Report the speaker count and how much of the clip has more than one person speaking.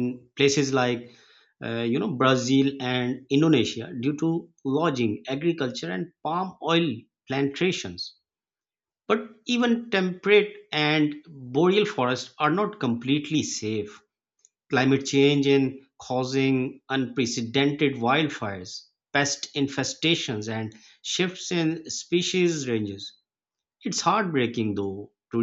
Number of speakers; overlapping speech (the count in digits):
1, no overlap